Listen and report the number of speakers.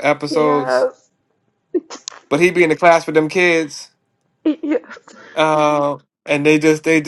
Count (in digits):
2